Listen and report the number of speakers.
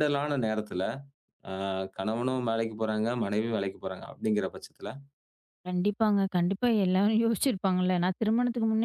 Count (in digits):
2